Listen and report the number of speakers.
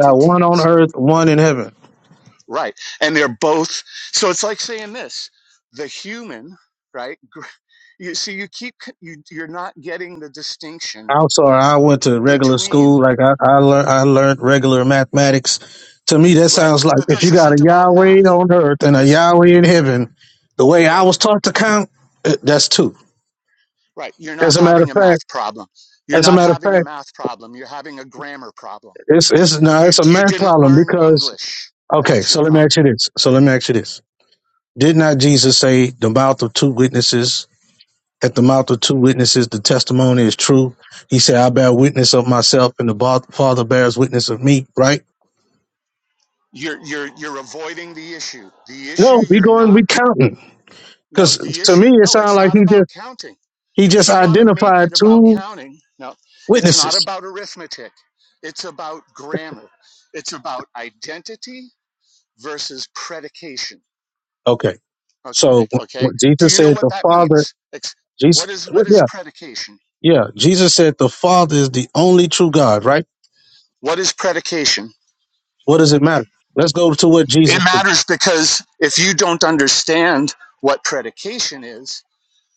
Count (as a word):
two